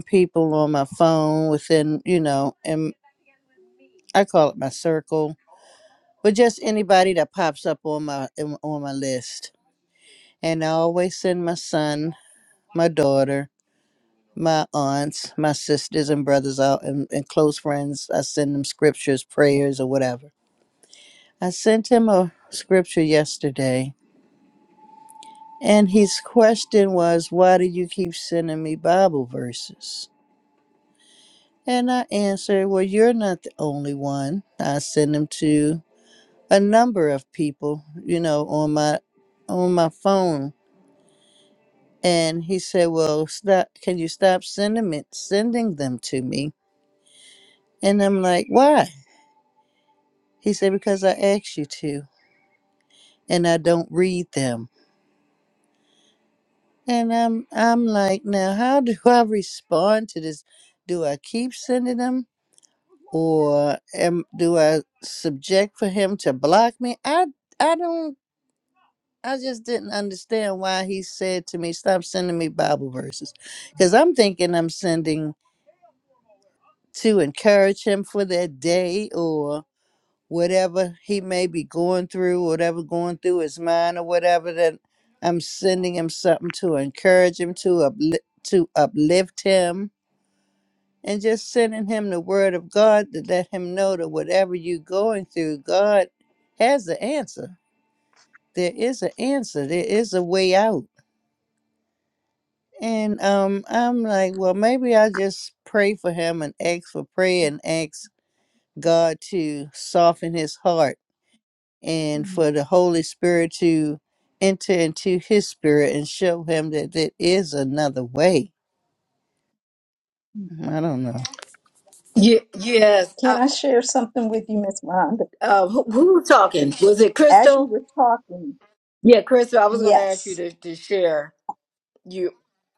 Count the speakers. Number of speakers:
three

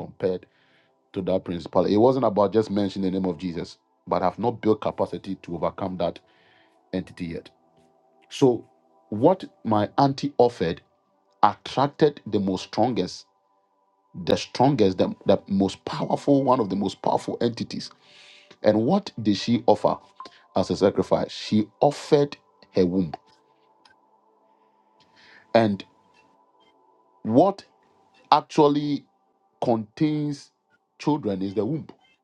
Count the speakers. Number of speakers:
one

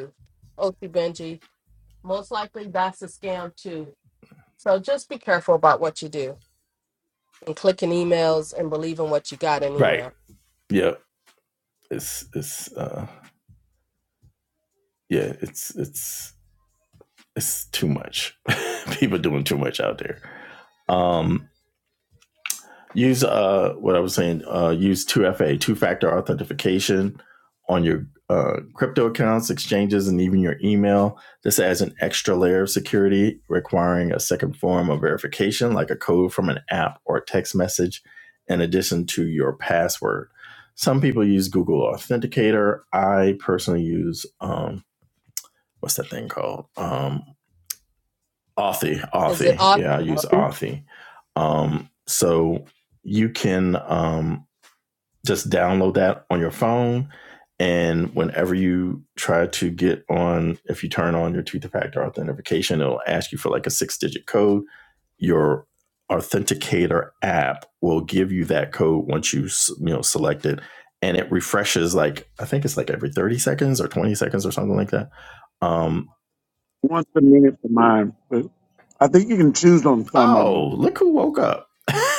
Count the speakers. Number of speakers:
three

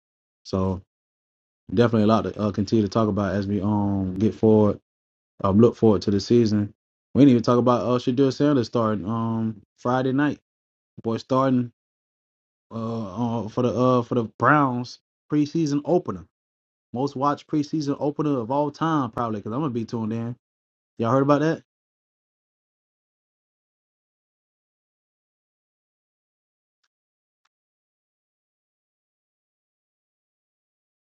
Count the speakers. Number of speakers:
one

